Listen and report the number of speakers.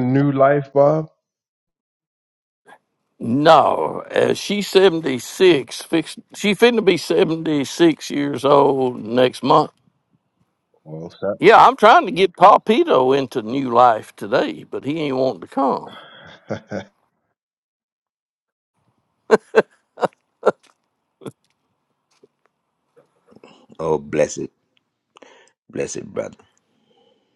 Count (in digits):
3